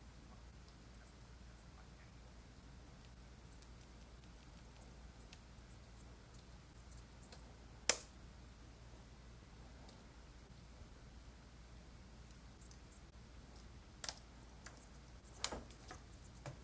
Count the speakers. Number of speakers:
0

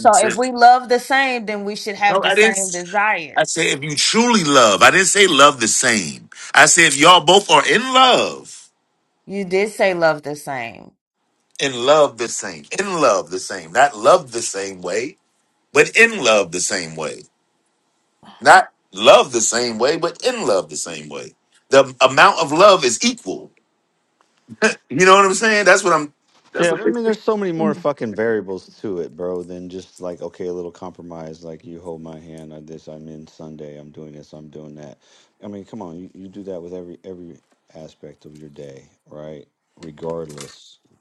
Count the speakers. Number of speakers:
3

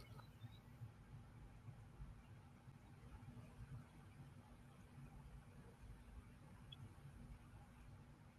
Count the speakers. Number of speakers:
0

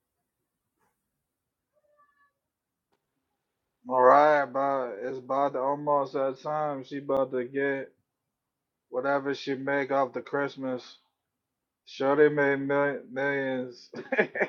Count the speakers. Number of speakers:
1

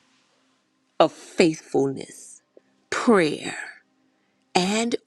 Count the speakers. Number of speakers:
1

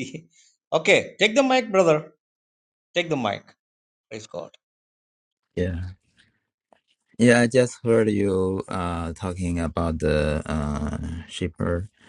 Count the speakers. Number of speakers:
2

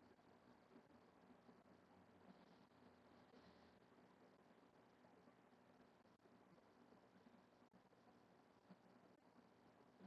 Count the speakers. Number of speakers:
0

